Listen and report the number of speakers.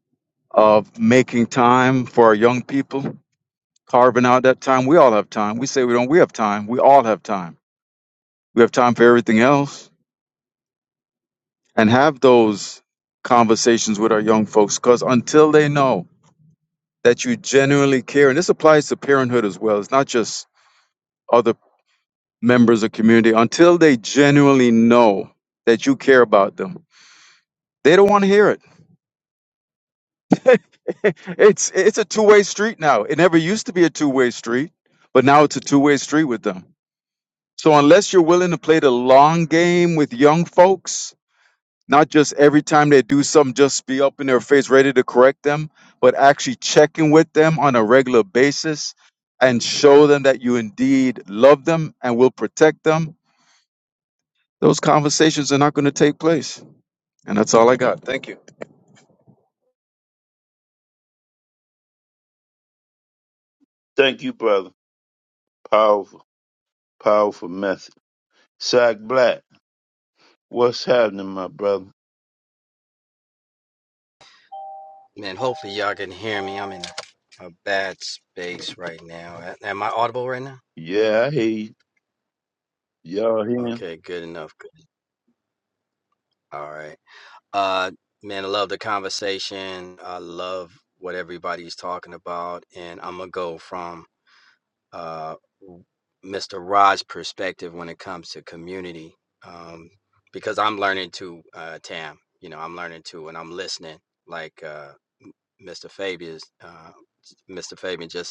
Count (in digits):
3